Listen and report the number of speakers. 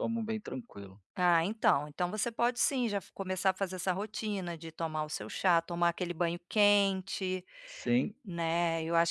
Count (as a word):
two